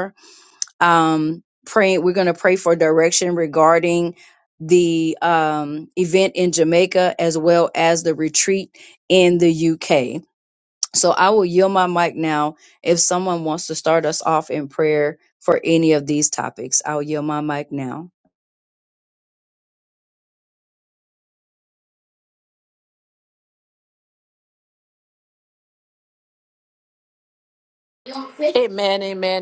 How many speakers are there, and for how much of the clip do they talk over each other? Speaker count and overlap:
two, no overlap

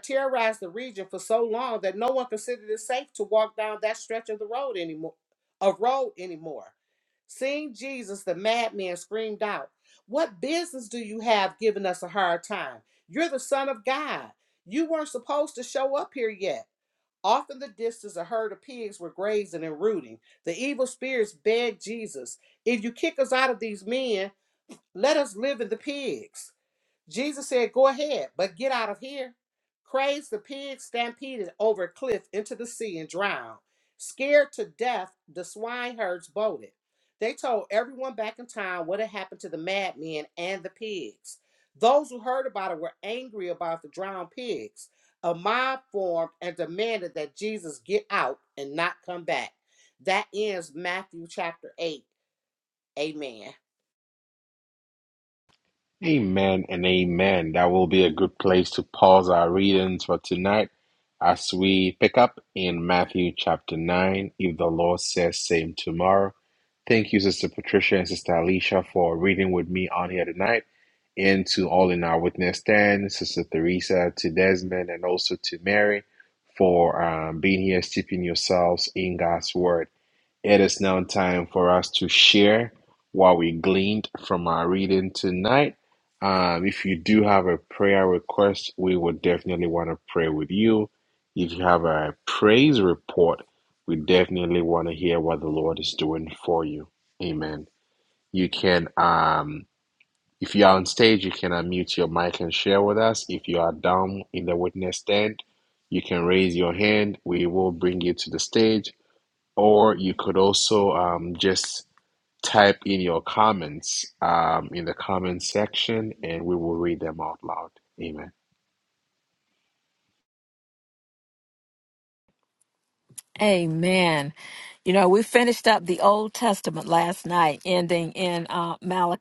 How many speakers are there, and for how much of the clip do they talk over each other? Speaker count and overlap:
three, no overlap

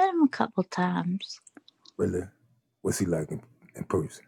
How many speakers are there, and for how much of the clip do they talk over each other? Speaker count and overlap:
two, no overlap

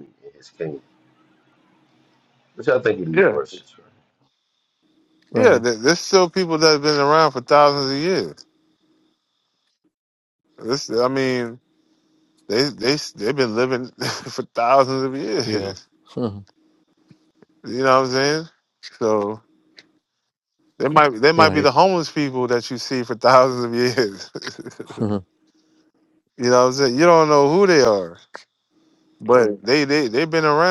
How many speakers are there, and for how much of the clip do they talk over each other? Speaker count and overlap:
three, about 4%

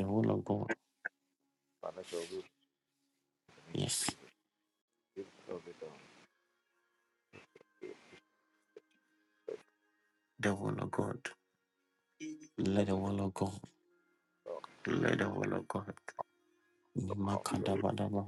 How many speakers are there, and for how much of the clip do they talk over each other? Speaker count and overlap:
two, about 3%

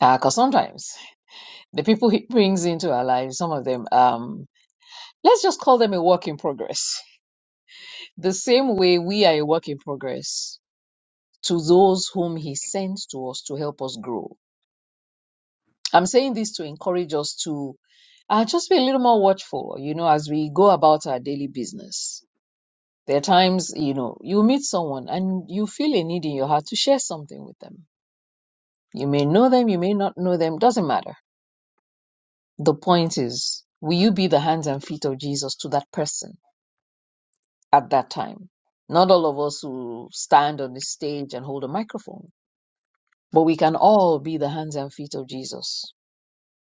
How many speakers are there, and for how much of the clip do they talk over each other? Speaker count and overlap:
one, no overlap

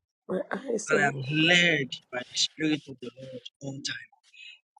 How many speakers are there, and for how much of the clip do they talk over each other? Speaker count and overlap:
two, about 16%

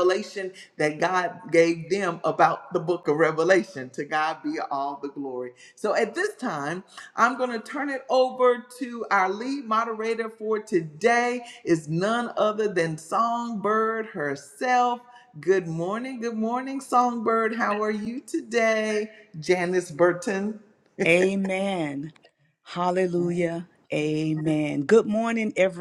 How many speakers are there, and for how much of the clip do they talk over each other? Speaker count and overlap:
two, no overlap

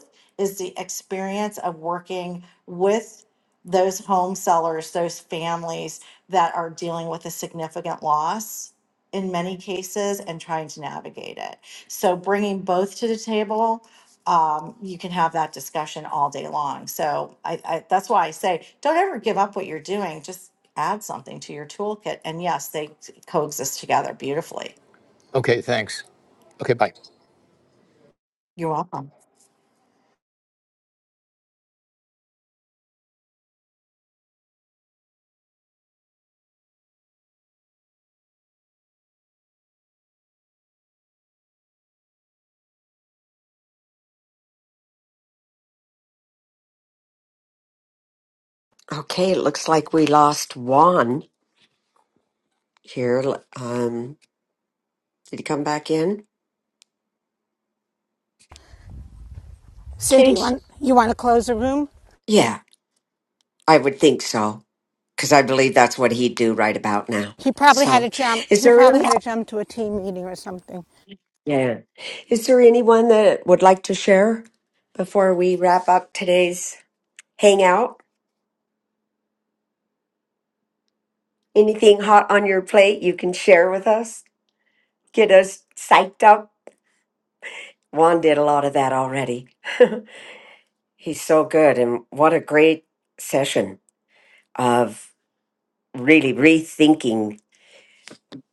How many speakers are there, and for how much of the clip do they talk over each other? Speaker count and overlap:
four, about 1%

